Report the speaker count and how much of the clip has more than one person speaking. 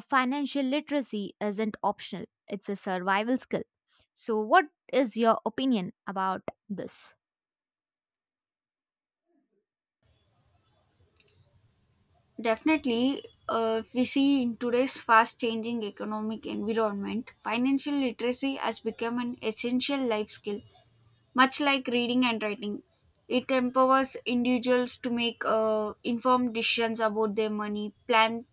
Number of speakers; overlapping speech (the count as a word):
two, no overlap